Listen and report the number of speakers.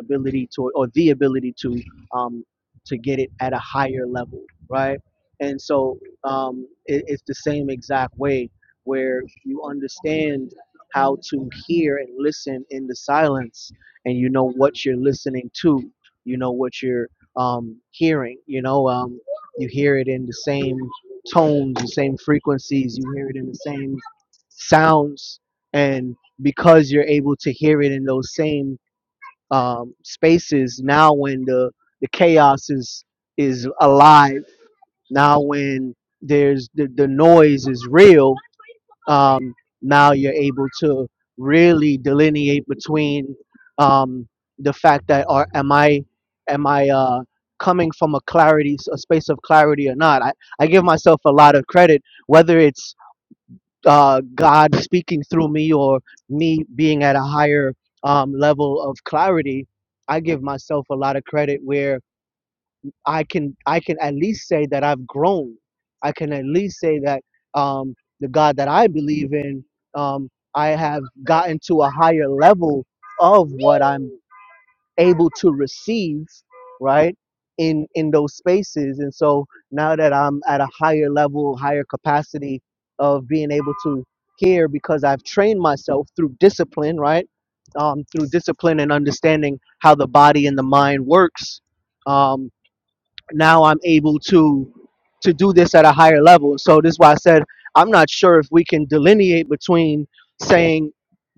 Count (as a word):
one